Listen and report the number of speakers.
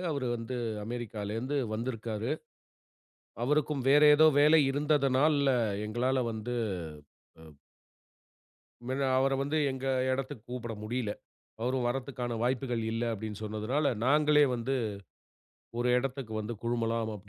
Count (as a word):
one